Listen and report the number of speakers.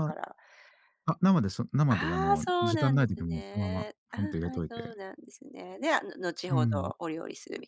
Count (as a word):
two